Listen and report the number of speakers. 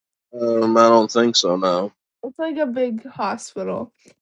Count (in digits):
2